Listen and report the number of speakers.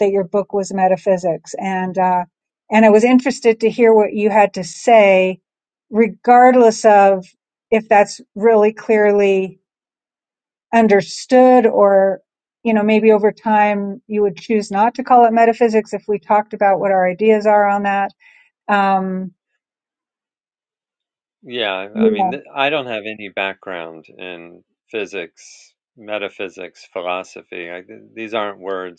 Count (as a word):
two